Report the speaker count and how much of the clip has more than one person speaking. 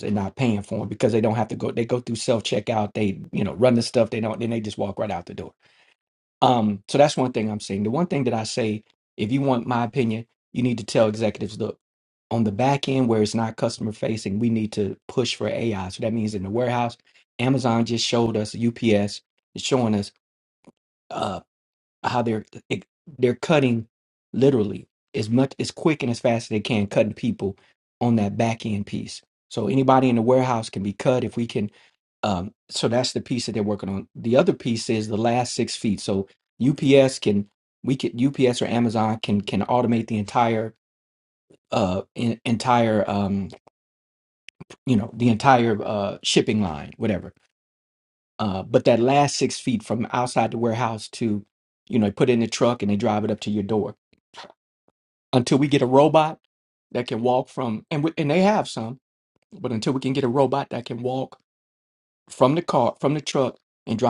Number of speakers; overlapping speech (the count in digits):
1, no overlap